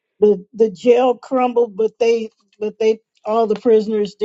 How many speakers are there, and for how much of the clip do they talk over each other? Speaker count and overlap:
1, no overlap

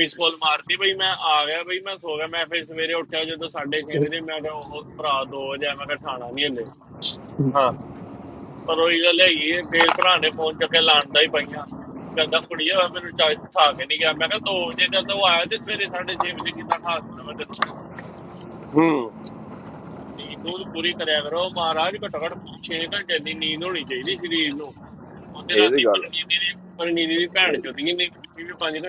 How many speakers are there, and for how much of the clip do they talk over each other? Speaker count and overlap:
2, about 3%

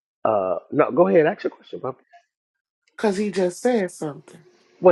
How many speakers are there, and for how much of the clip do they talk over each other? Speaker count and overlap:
2, no overlap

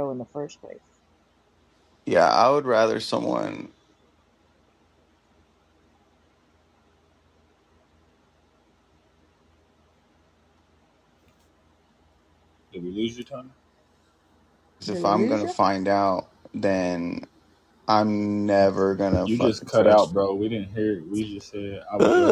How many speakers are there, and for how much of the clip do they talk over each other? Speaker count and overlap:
3, about 9%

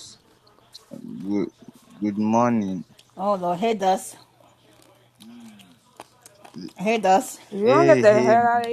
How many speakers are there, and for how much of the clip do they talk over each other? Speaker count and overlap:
3, about 9%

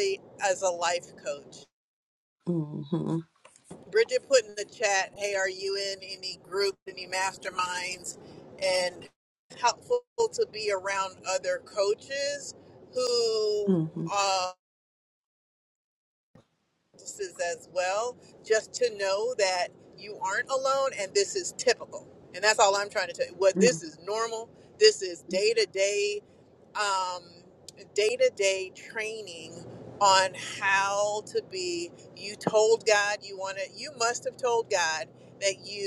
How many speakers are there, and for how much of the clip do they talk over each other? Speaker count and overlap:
2, about 2%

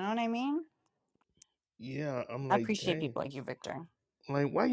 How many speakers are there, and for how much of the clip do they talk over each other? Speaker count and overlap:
2, about 14%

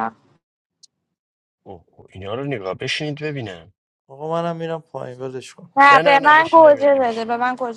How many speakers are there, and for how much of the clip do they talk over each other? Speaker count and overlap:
3, about 18%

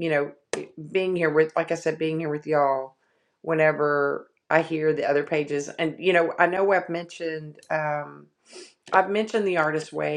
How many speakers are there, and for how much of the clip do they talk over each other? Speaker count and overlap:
1, no overlap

